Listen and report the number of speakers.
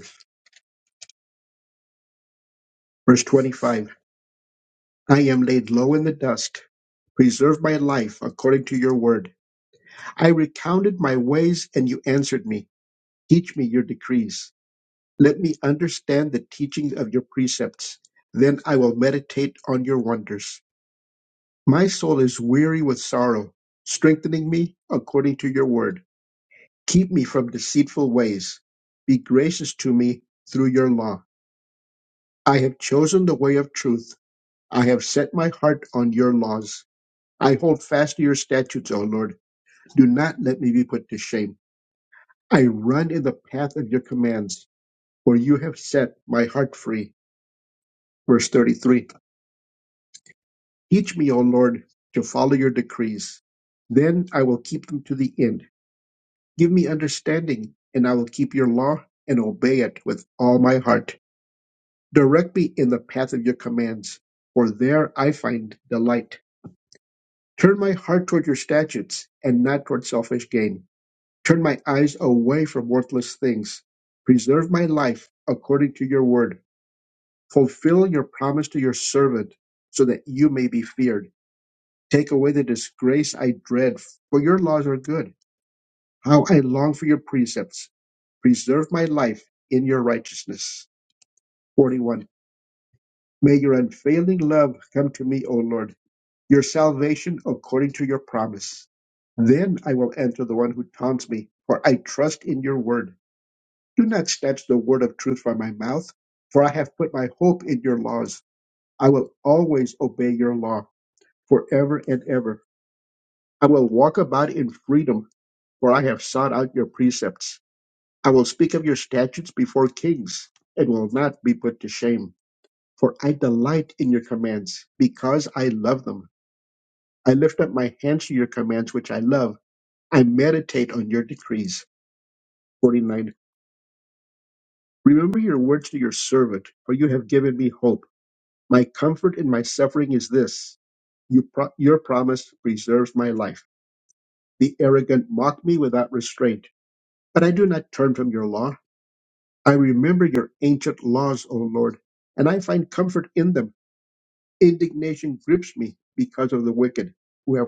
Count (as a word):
one